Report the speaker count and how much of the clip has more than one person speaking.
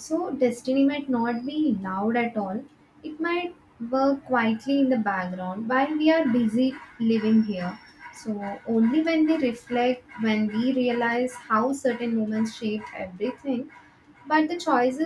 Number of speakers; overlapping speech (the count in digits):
1, no overlap